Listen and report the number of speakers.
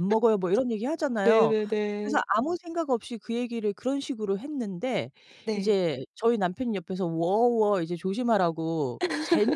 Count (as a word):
two